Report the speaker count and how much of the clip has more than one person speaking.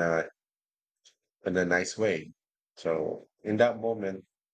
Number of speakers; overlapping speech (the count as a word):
one, no overlap